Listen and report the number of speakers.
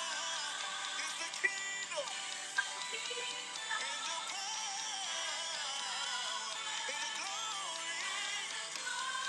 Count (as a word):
zero